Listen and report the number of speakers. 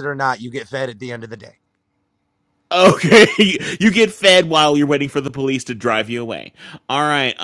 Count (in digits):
2